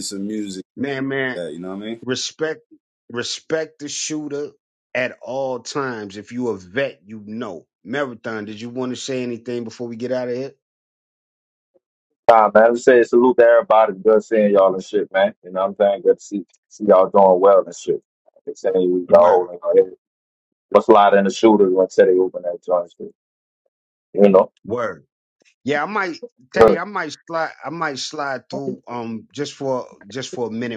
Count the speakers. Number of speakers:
3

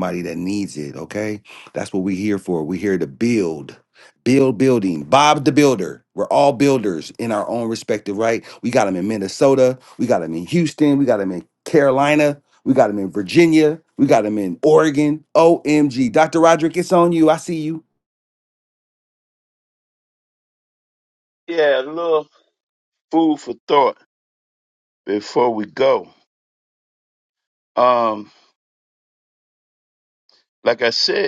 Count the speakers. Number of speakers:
2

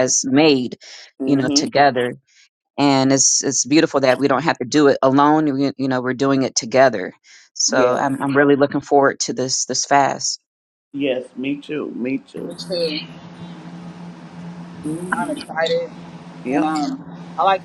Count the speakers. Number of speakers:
3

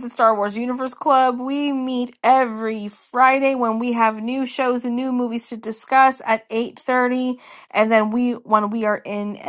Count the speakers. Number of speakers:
1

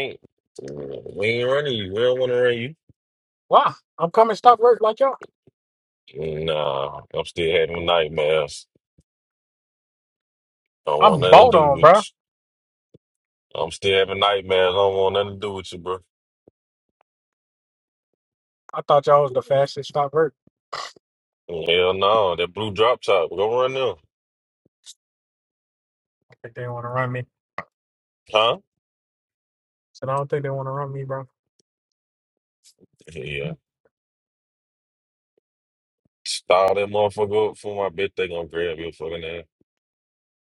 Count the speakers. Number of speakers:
2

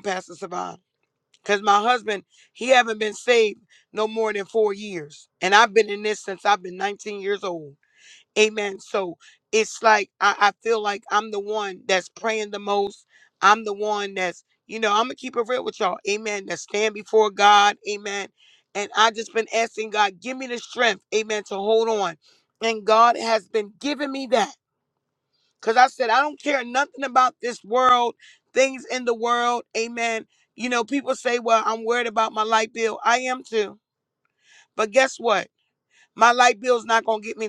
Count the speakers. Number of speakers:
1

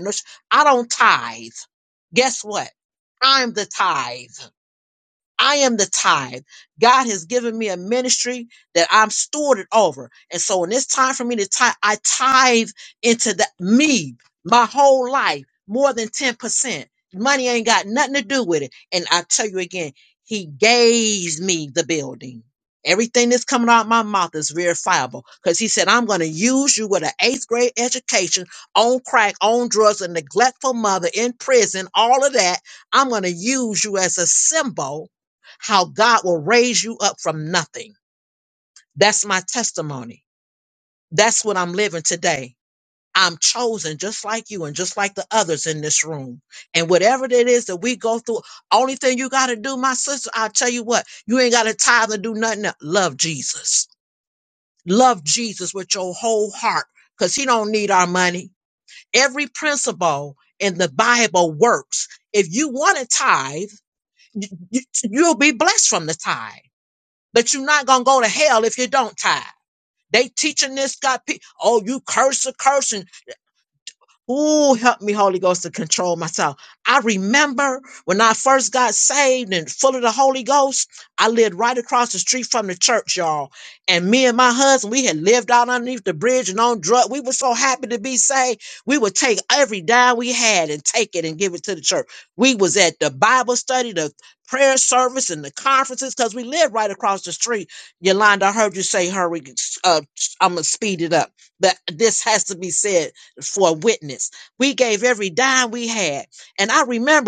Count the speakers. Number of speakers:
1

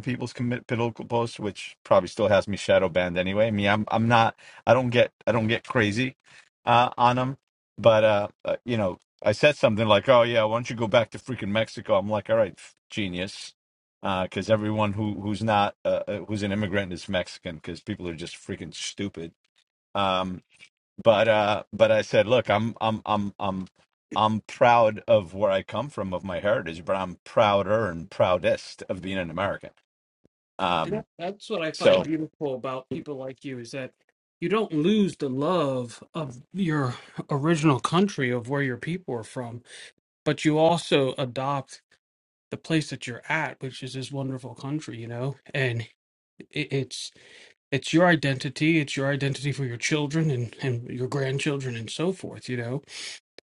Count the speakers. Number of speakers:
2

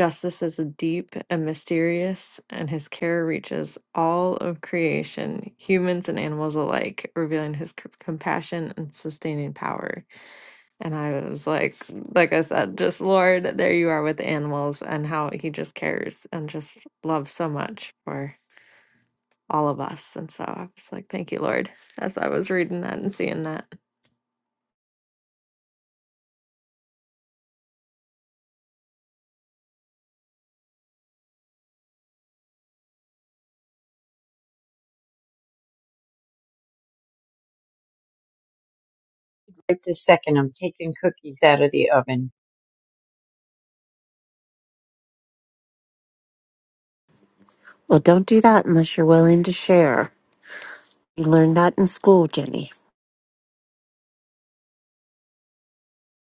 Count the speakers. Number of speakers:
3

